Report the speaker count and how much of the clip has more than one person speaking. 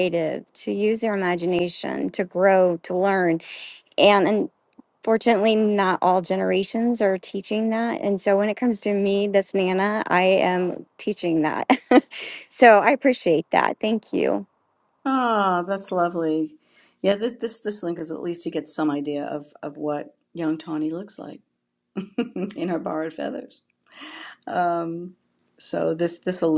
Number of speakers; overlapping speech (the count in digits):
2, no overlap